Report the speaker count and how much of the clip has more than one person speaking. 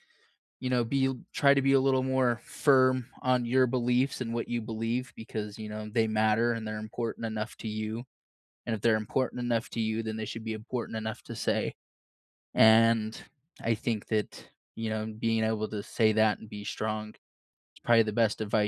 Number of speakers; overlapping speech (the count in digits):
1, no overlap